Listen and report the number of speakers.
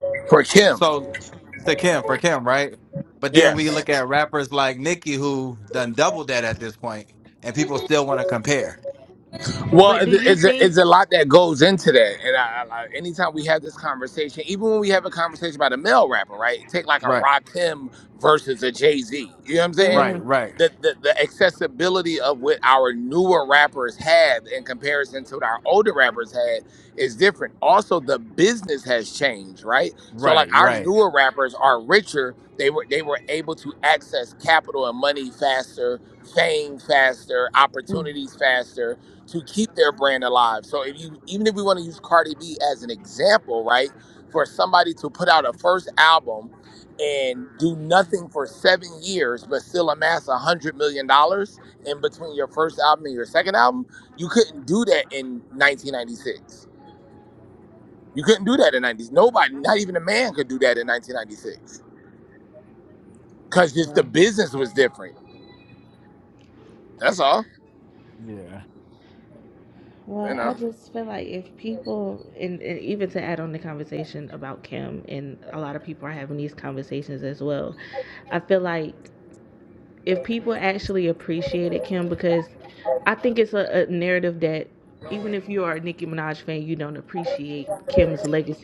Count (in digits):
3